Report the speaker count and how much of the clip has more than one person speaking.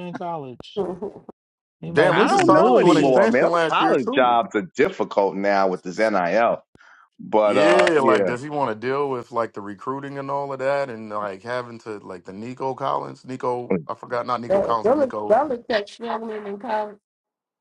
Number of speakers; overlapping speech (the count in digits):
4, about 24%